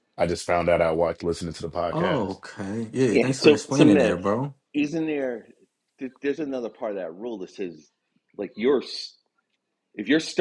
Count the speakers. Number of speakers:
3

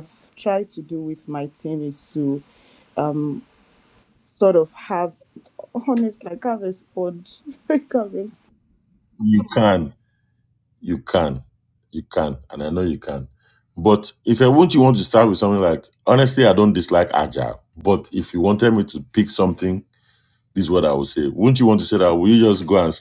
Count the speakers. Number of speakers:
2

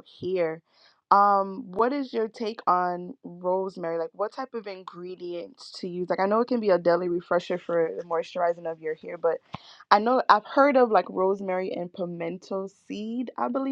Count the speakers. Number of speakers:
1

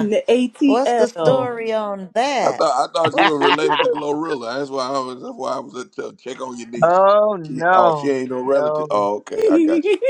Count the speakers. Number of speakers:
4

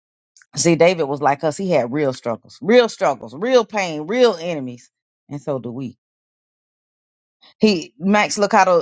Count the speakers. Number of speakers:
1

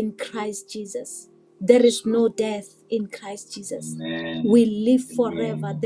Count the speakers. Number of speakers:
2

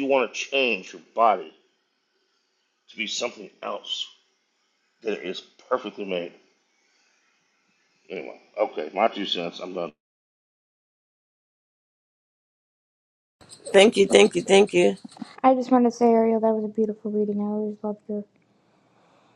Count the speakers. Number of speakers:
3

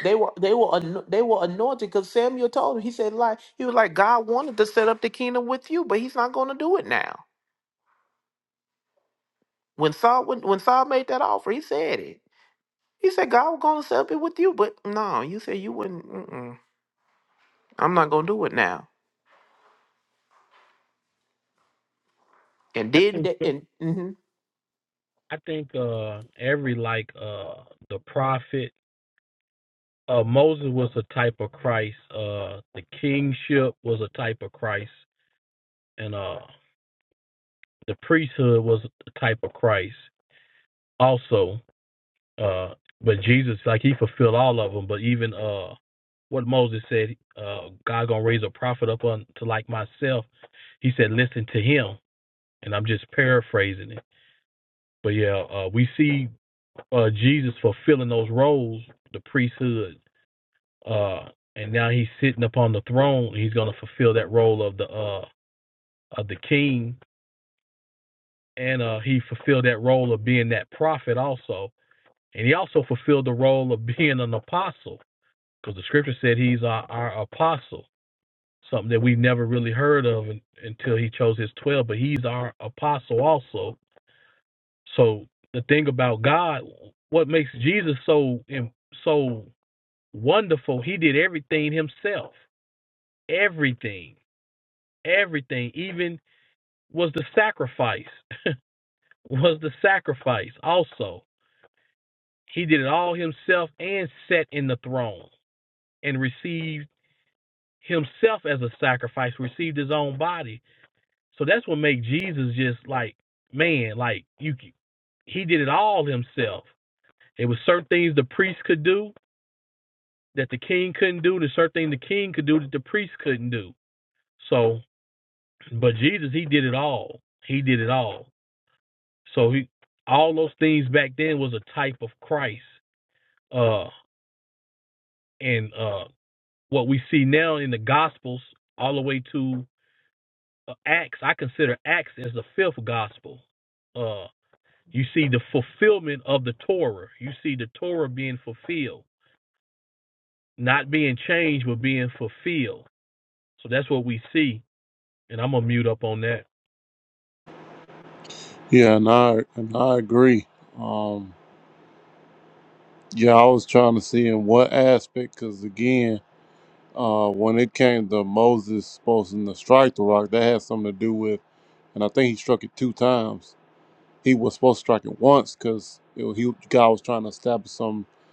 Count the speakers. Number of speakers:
3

